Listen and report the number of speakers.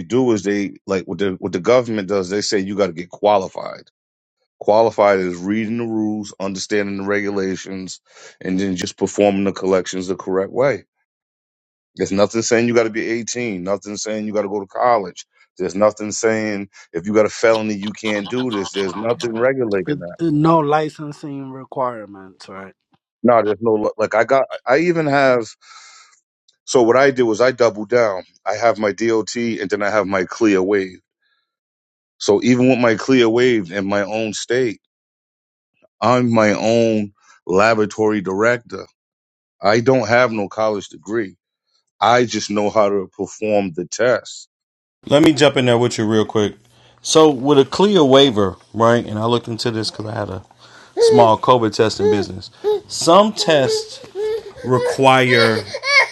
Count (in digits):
3